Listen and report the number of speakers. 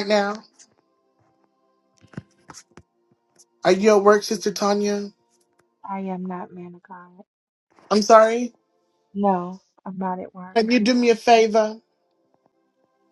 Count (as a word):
two